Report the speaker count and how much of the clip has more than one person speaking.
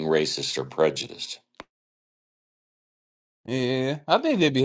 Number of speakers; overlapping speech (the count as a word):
two, no overlap